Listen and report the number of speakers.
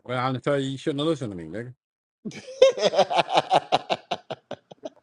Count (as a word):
two